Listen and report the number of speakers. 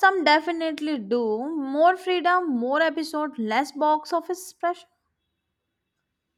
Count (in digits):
1